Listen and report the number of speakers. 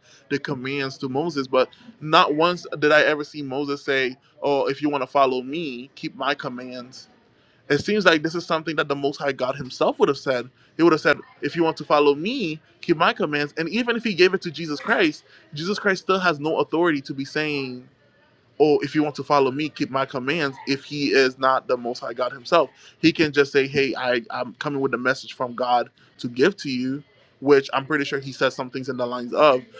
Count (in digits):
1